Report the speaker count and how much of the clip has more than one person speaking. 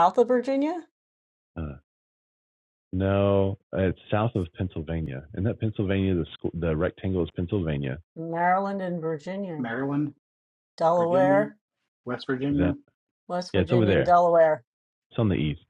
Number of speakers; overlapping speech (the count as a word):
three, about 9%